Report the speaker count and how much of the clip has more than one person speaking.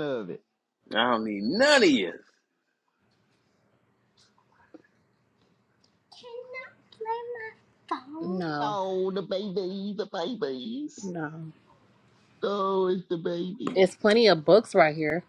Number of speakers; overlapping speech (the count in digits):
3, about 1%